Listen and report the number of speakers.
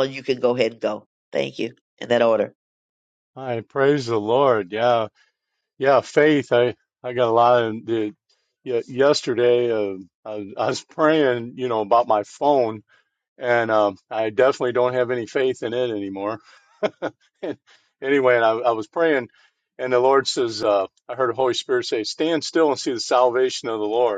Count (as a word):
two